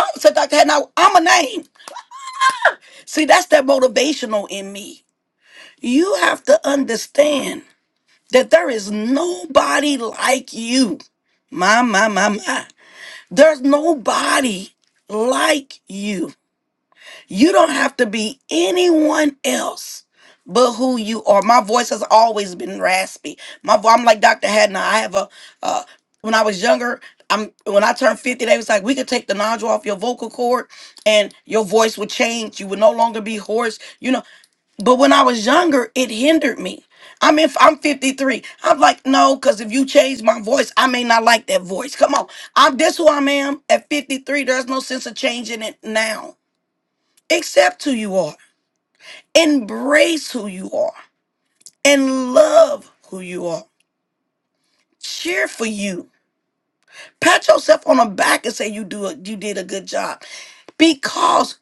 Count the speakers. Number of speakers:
1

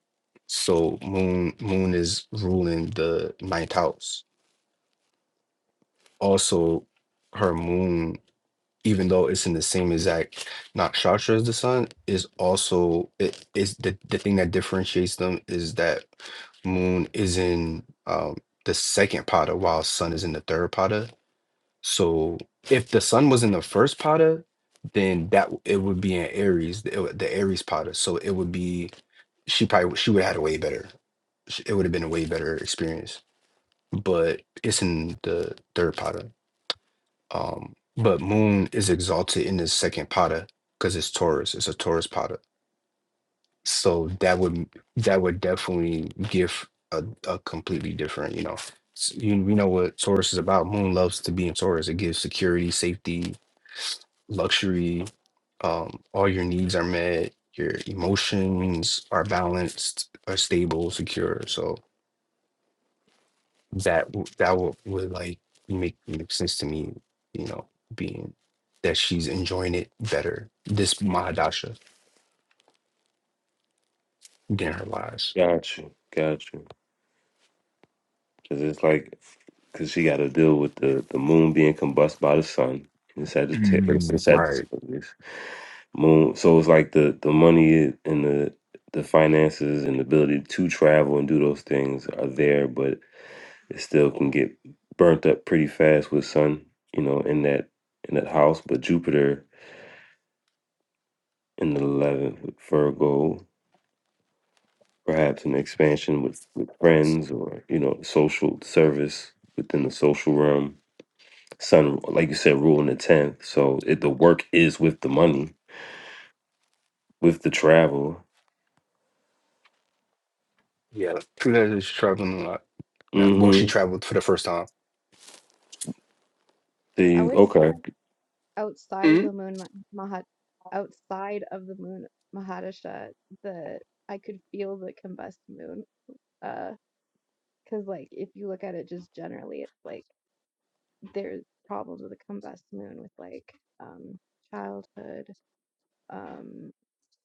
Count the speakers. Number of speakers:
3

